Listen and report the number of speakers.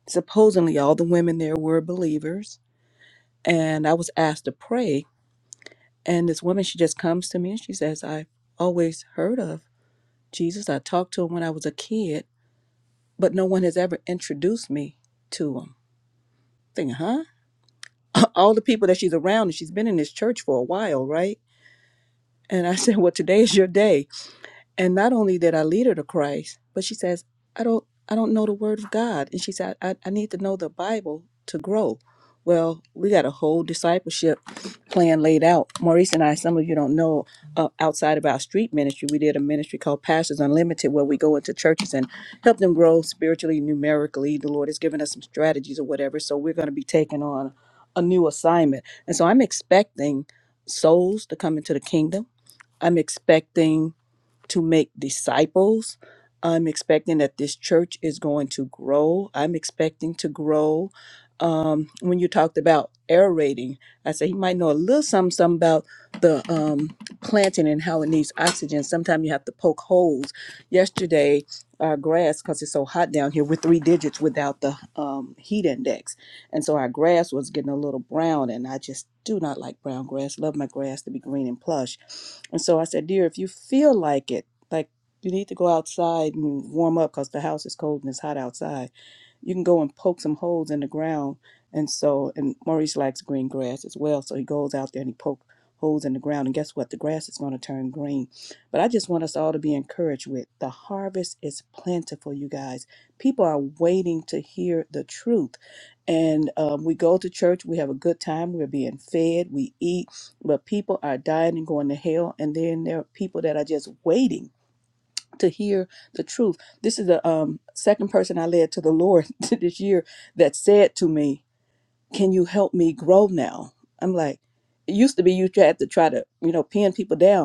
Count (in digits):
1